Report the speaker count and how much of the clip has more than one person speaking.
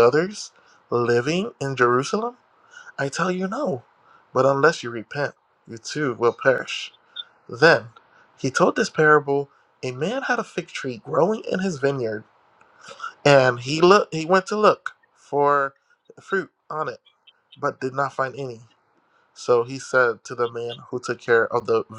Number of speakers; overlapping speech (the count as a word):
one, no overlap